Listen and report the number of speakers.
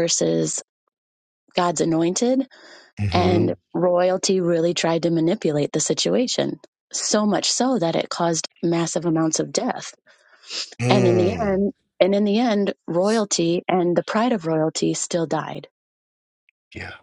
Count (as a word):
two